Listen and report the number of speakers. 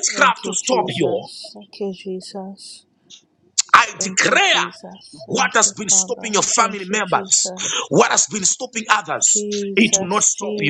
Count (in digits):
2